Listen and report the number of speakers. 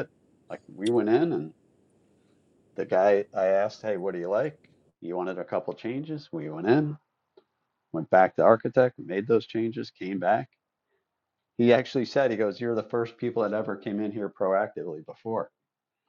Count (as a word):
one